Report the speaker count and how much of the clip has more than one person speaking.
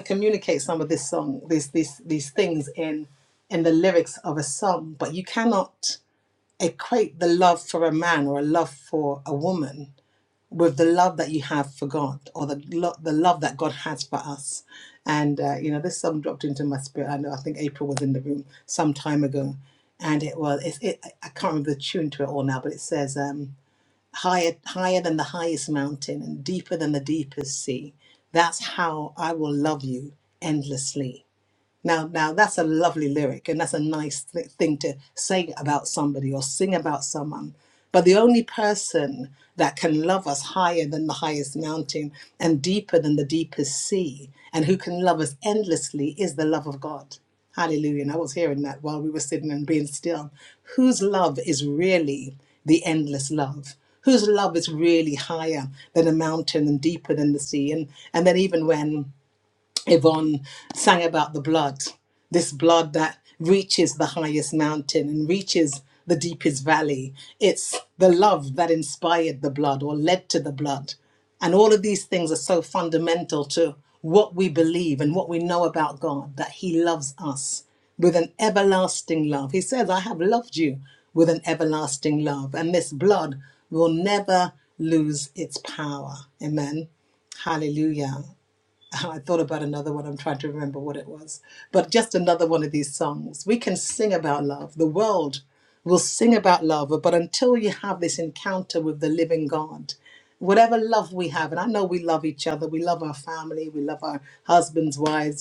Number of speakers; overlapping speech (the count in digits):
1, no overlap